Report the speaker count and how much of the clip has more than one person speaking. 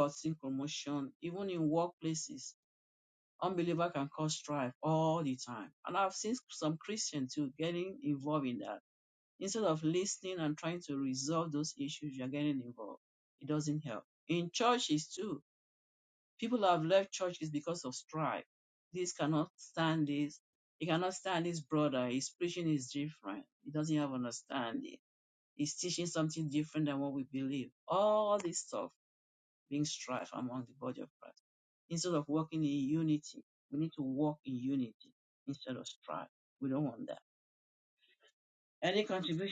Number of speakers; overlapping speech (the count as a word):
one, no overlap